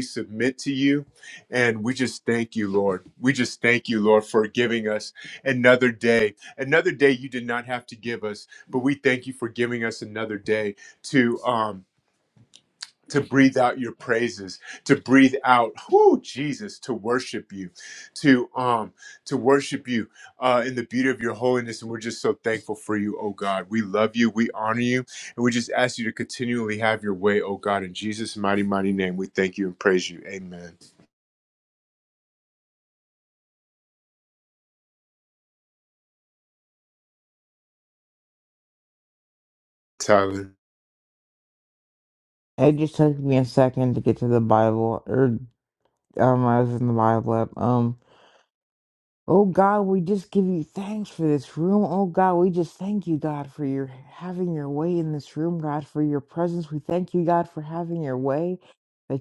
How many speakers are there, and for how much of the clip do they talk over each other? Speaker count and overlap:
two, no overlap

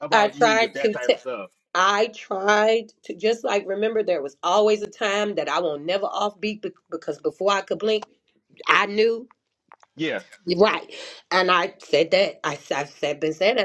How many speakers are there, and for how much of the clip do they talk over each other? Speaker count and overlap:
two, about 8%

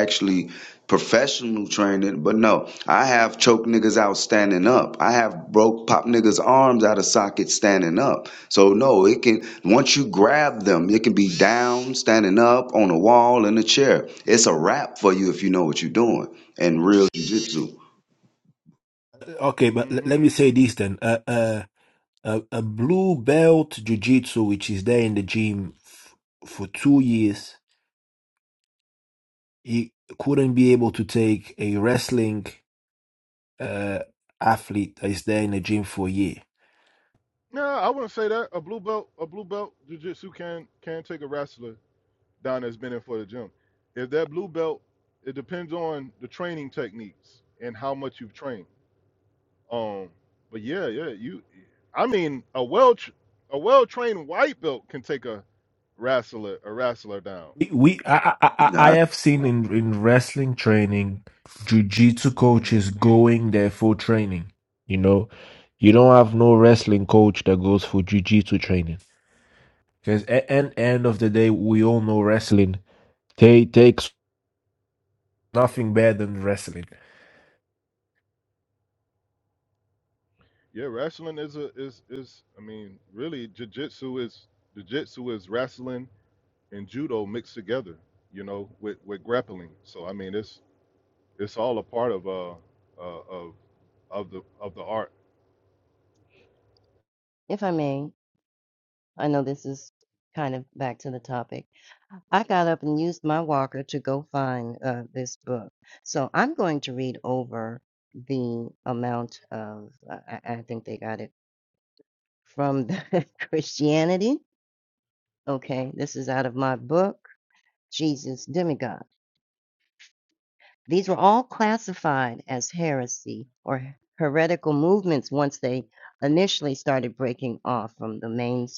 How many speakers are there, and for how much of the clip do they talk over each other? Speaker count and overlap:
four, about 1%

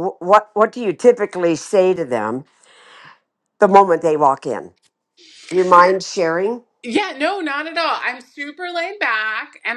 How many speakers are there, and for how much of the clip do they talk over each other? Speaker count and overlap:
two, no overlap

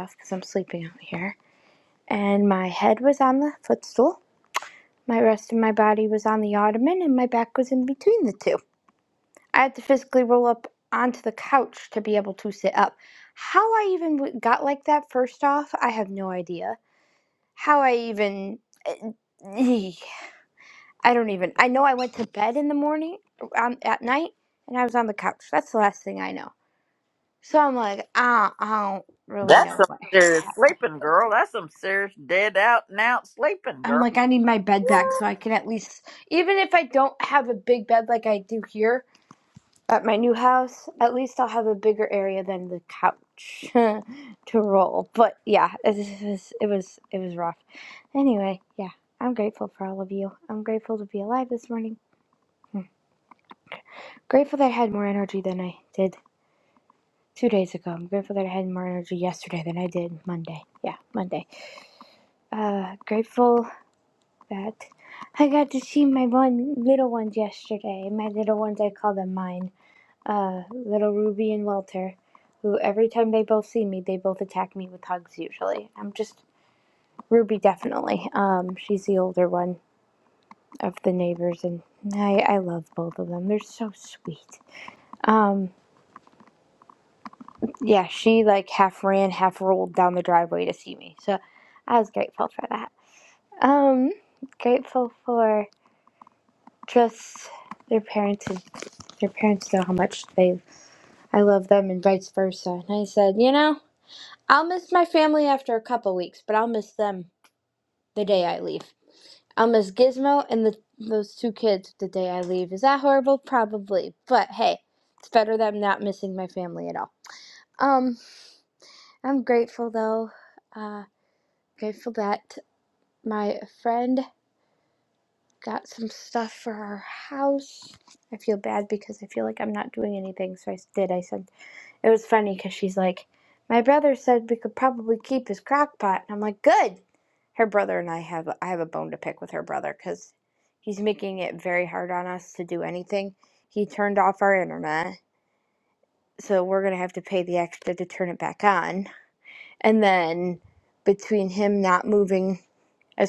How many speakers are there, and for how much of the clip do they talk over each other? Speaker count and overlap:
two, about 1%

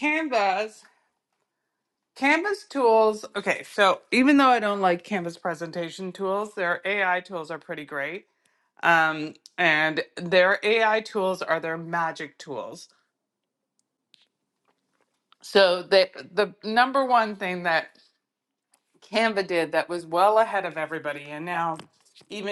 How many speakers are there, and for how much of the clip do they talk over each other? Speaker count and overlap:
one, no overlap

